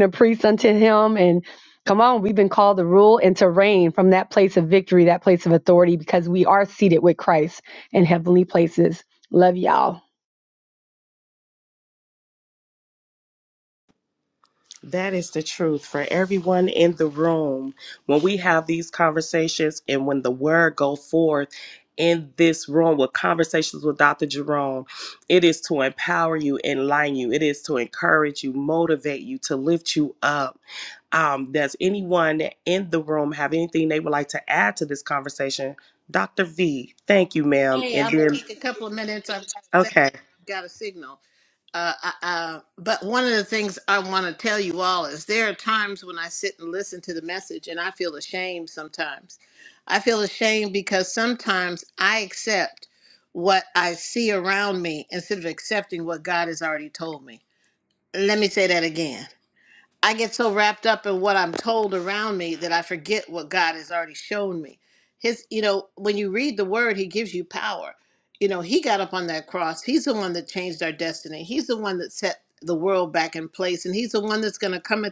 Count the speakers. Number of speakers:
three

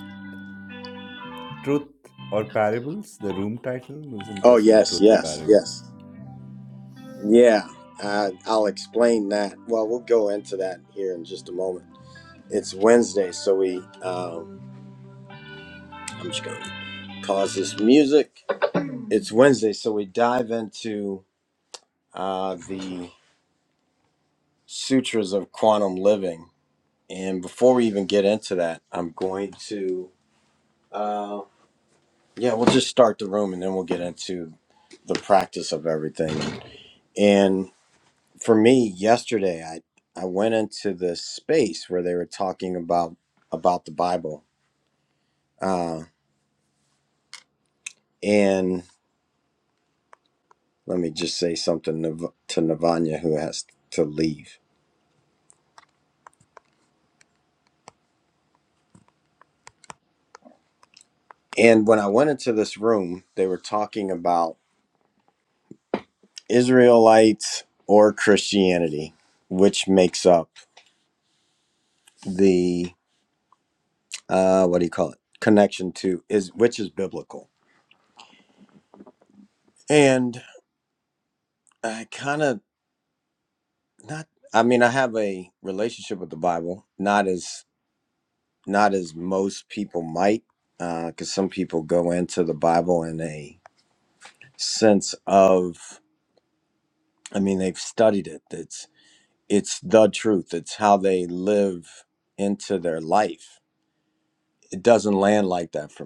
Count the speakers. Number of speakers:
two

